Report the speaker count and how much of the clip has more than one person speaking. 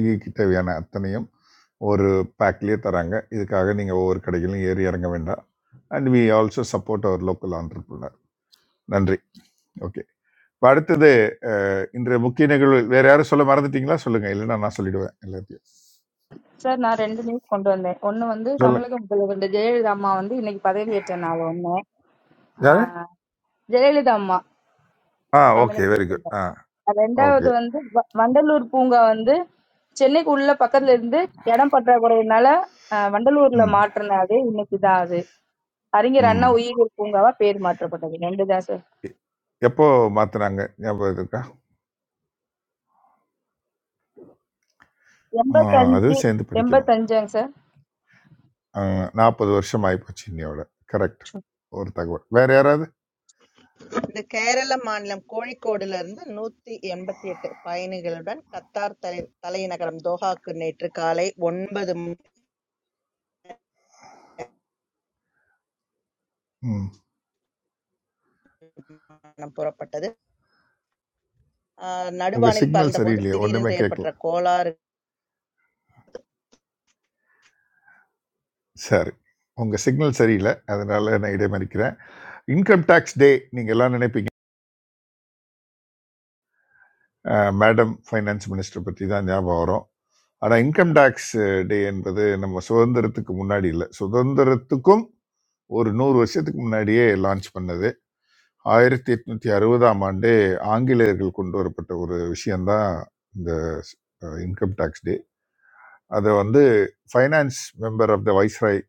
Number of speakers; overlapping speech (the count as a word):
three, about 4%